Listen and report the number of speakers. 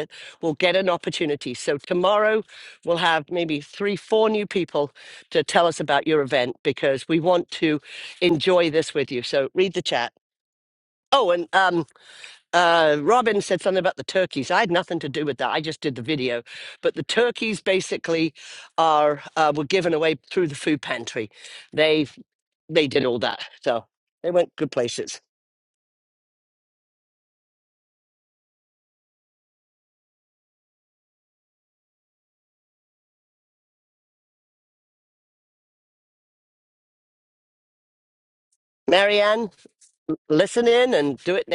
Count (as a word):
one